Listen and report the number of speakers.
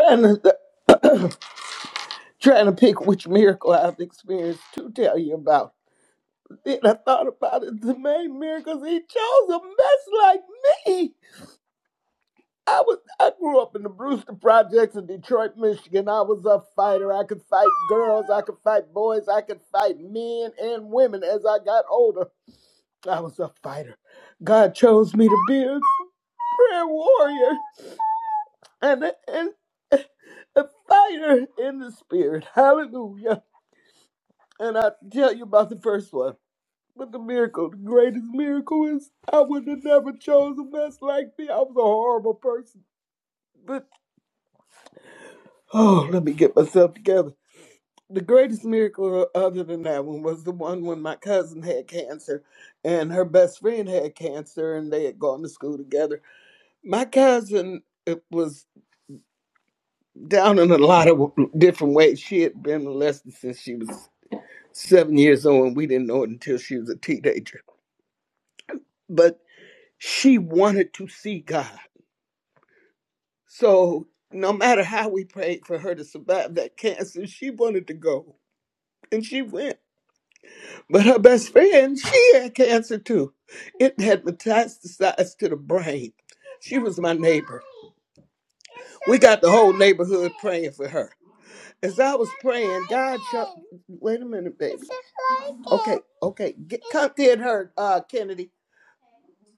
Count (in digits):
1